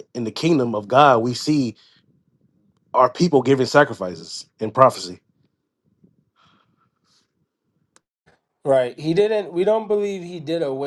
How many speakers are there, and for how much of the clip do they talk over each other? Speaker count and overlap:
2, no overlap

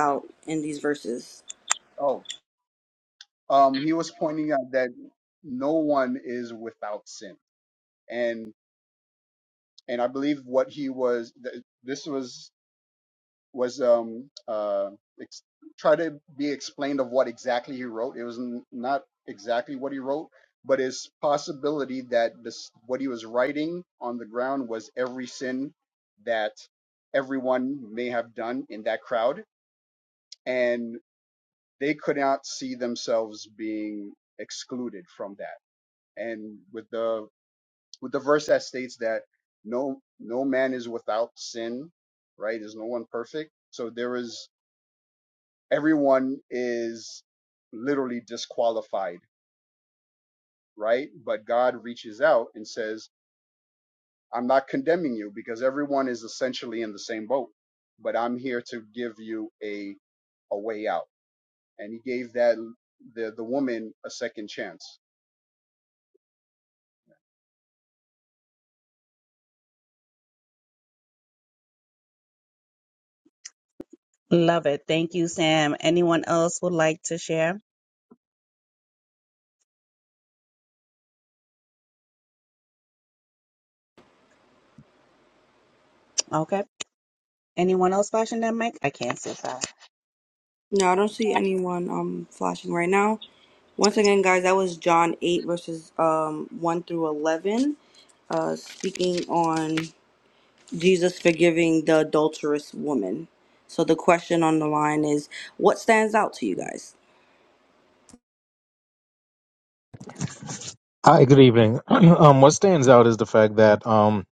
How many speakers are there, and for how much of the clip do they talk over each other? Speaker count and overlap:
4, no overlap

